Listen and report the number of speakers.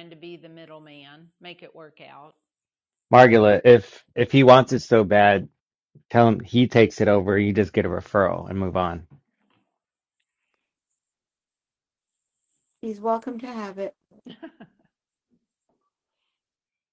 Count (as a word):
three